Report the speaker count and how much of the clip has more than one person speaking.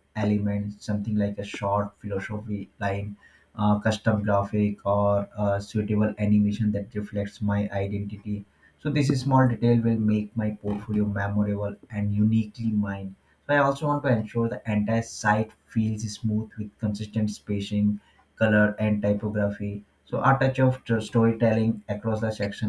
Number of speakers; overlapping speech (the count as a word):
one, no overlap